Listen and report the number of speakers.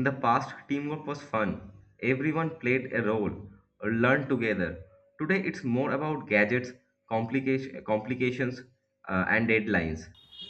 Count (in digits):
1